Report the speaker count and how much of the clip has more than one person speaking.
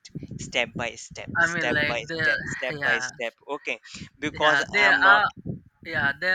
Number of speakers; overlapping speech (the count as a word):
two, about 36%